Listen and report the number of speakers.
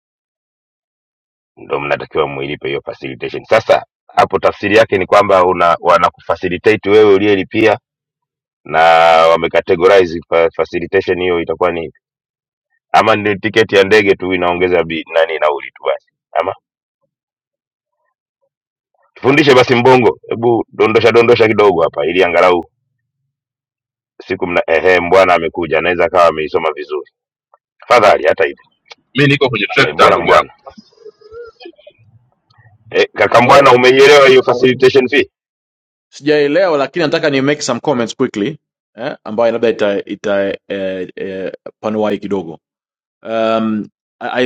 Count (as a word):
three